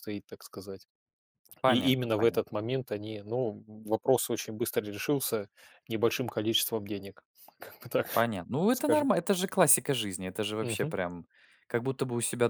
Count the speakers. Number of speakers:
2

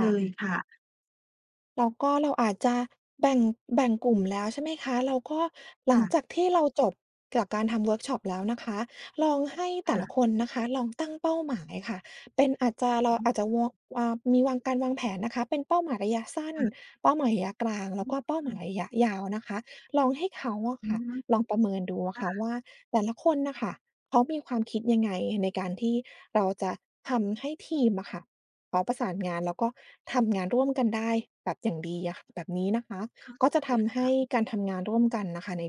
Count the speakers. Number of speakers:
2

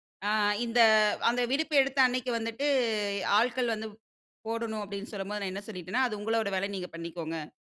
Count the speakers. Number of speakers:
1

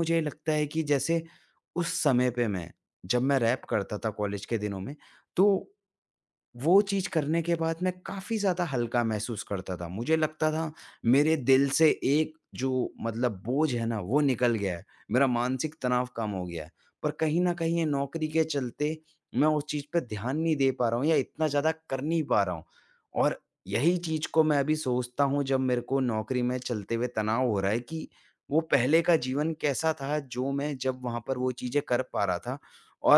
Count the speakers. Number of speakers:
1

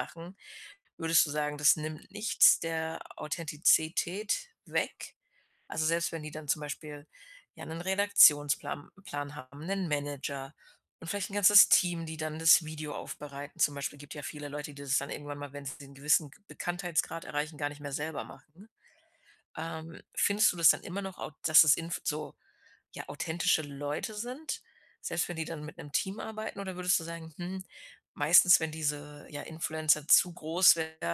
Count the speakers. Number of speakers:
1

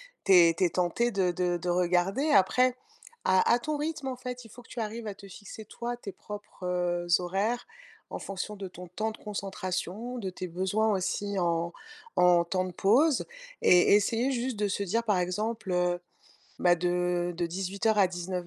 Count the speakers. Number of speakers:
1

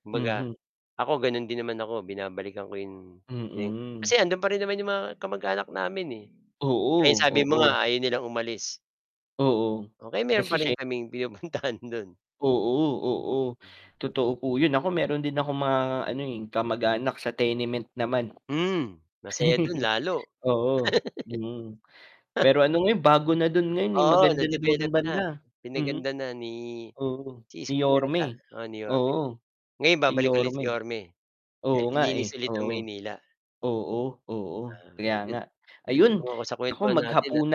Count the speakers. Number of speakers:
2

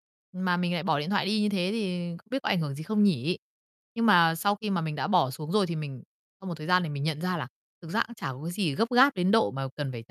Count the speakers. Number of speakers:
1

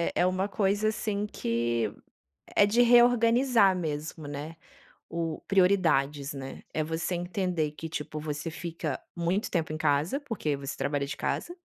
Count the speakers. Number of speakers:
1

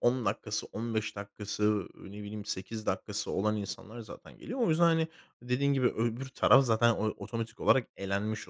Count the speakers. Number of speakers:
1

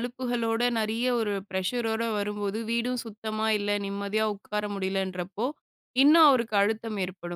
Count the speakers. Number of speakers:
1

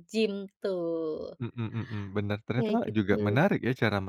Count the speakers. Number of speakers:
2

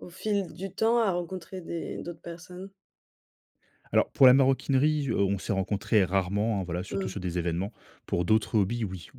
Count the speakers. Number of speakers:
2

